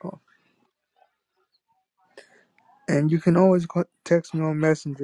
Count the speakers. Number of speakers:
1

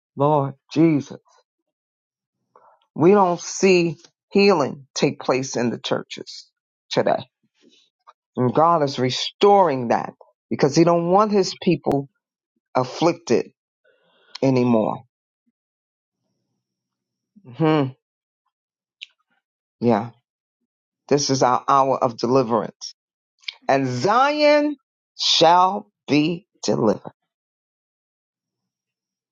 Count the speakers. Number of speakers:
1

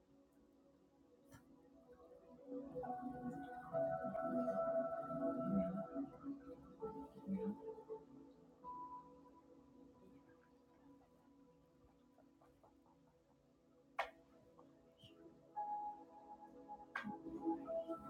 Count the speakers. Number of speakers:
0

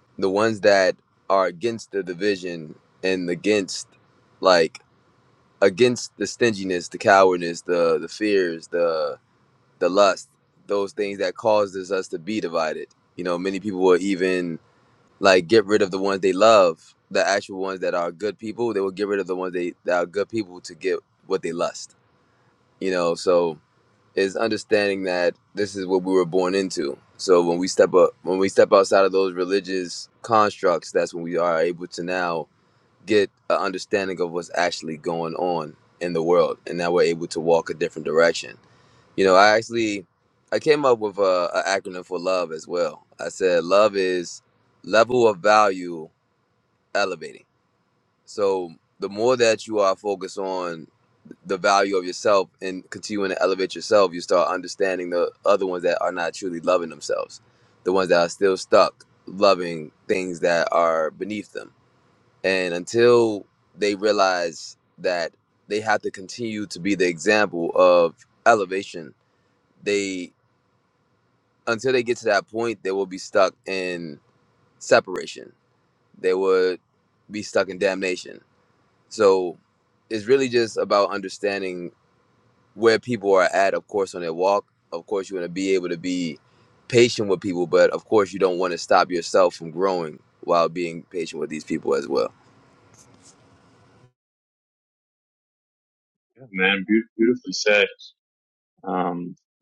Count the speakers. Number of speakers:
2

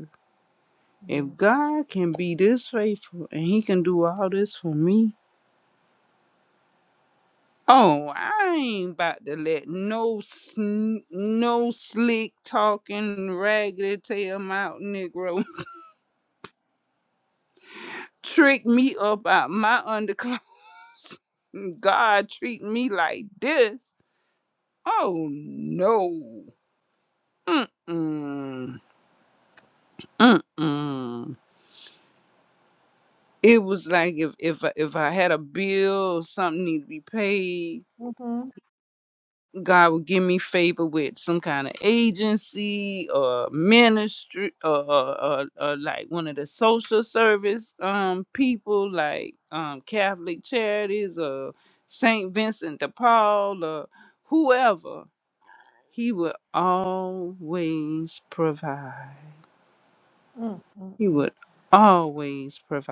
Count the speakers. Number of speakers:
2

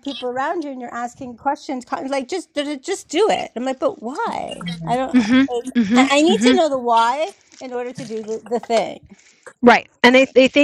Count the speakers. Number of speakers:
2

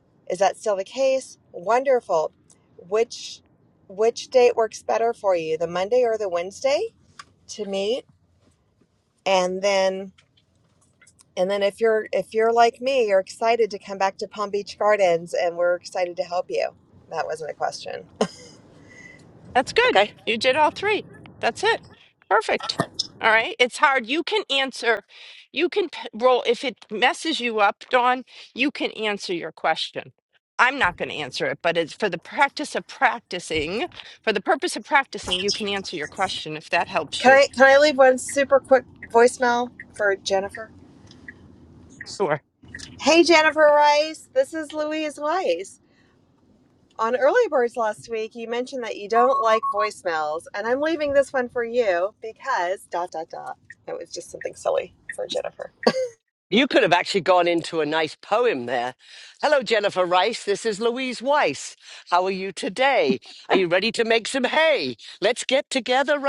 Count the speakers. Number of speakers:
3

